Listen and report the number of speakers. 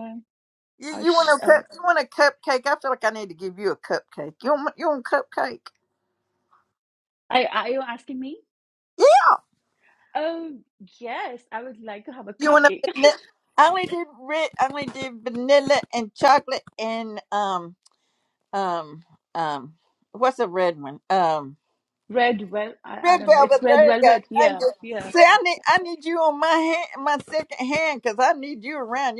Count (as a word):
two